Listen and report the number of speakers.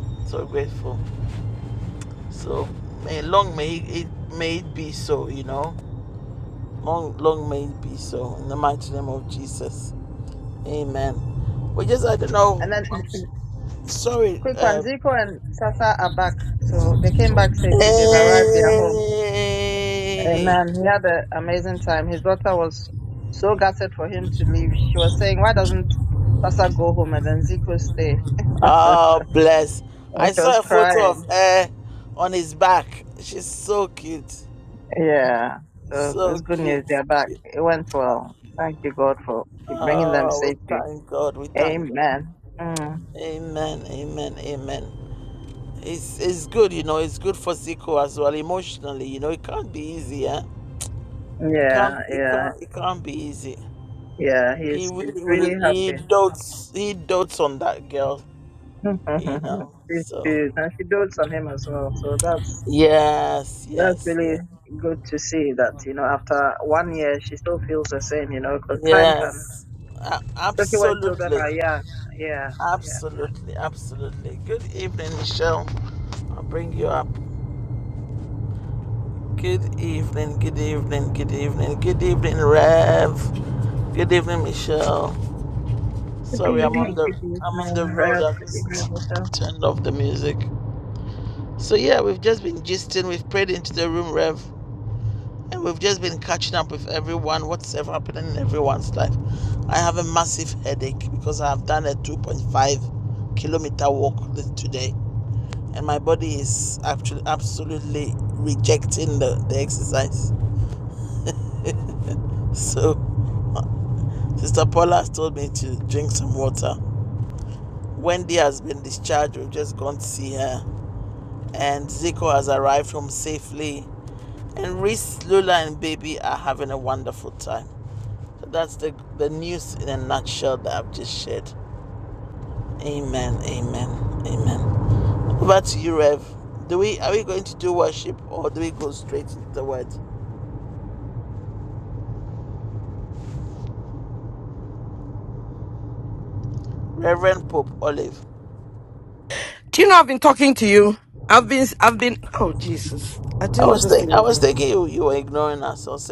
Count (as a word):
three